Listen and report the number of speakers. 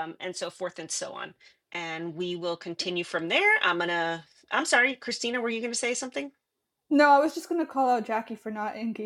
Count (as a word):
two